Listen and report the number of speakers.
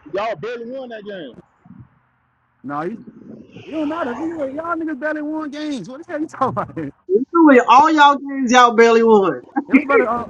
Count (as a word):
three